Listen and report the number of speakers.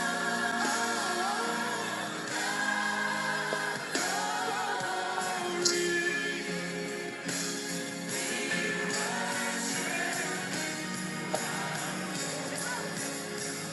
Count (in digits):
0